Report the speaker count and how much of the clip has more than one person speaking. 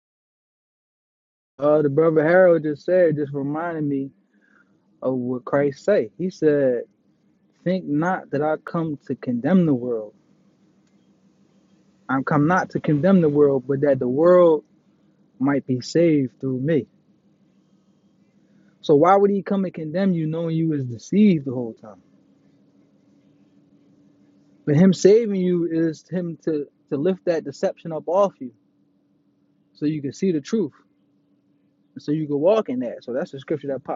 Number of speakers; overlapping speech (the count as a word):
one, no overlap